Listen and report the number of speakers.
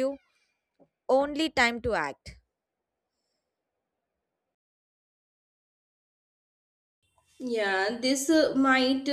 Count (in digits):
2